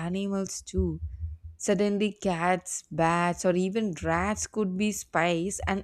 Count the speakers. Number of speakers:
1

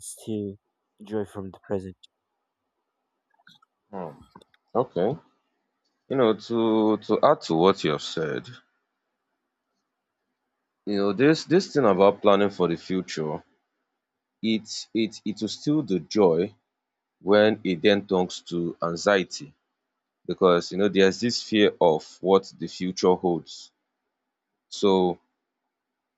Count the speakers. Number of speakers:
2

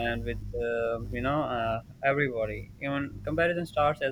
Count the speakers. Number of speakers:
1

